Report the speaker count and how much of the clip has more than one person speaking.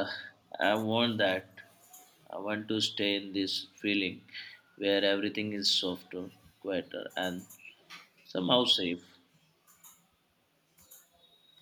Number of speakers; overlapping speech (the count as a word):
one, no overlap